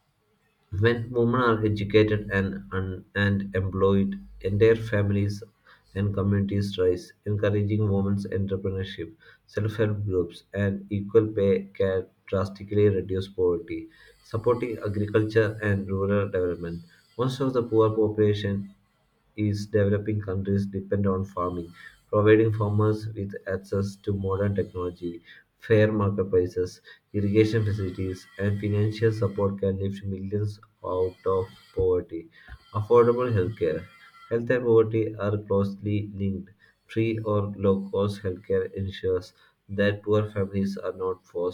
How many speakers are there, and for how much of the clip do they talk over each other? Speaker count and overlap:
1, no overlap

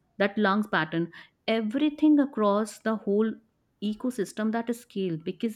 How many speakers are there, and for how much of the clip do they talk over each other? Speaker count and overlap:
1, no overlap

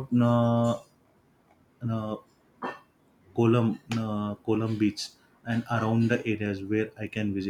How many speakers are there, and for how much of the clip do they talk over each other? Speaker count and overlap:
1, no overlap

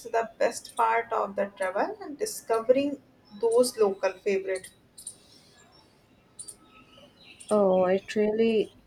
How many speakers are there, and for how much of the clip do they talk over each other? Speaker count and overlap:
2, no overlap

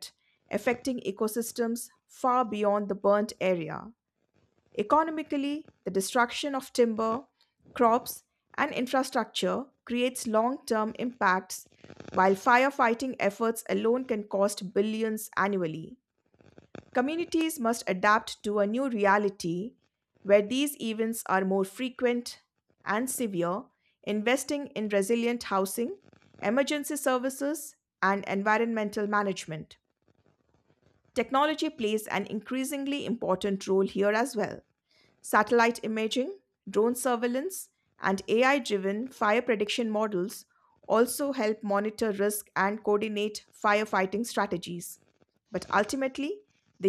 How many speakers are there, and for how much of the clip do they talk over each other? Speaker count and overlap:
1, no overlap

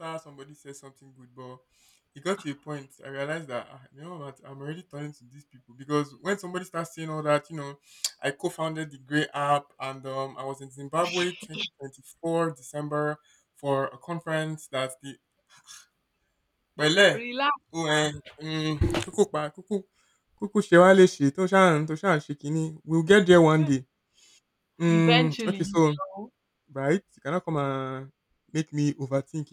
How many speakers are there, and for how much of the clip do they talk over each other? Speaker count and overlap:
2, about 4%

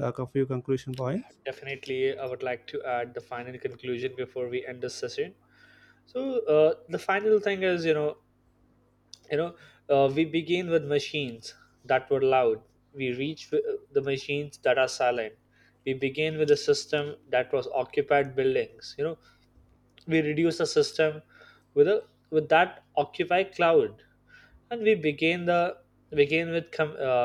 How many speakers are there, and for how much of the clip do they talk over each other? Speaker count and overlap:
2, no overlap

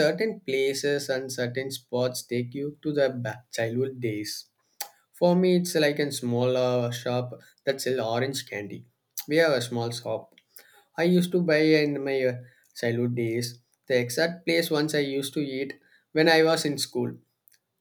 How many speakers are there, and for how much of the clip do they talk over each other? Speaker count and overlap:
1, no overlap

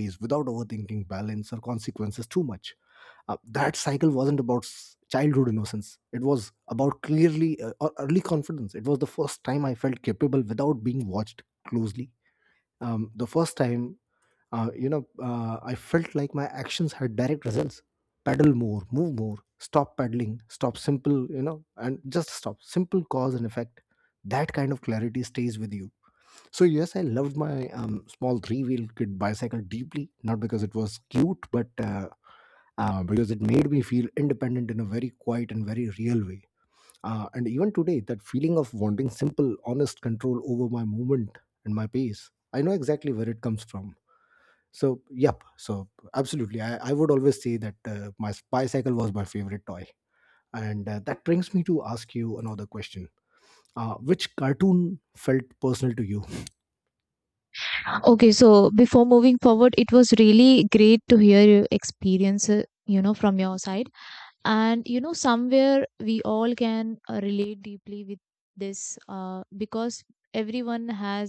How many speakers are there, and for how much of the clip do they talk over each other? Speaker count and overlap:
2, no overlap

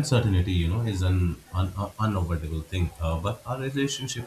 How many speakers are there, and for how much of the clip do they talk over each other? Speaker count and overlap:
1, no overlap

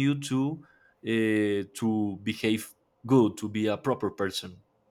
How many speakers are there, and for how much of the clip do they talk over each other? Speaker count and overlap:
1, no overlap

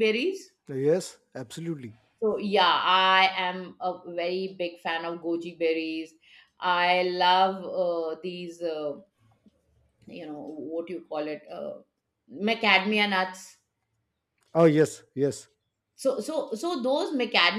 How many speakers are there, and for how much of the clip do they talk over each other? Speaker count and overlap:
2, no overlap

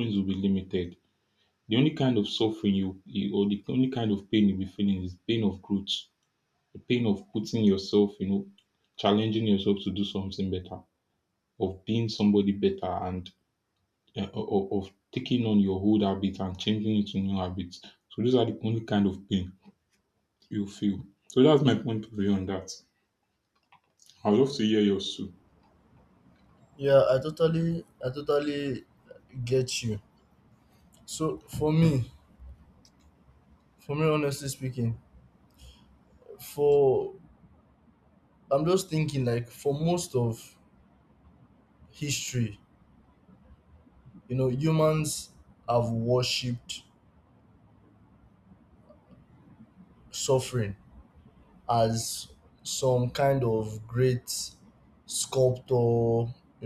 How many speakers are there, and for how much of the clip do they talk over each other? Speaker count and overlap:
2, no overlap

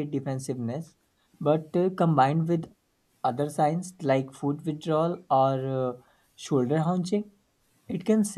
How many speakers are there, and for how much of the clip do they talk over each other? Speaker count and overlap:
1, no overlap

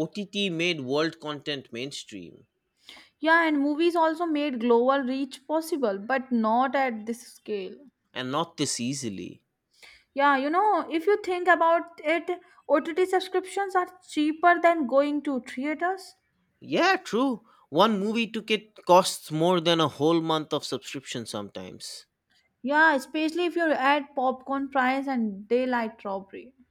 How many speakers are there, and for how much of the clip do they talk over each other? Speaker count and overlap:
2, no overlap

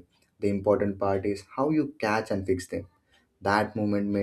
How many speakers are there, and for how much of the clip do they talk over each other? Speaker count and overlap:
1, no overlap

